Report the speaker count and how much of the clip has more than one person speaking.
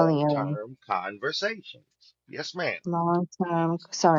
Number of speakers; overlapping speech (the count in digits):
2, about 12%